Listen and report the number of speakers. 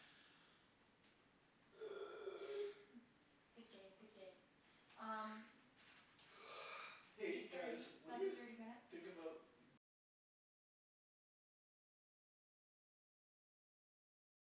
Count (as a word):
two